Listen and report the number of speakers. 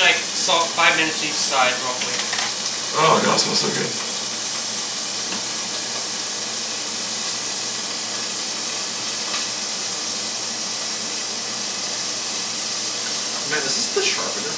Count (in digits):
2